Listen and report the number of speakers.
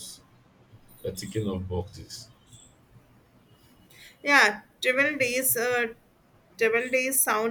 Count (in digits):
2